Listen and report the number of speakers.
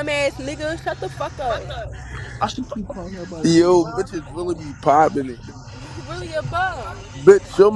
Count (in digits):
3